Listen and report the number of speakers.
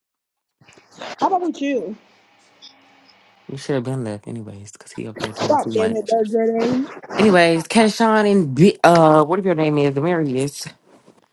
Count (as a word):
two